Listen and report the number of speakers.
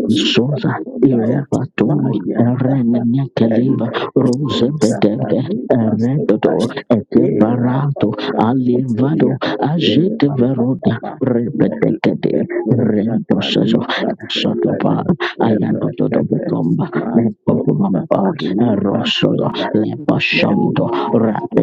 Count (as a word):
two